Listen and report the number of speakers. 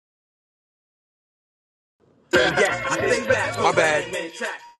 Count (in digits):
1